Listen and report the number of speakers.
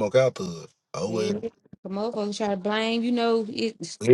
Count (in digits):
2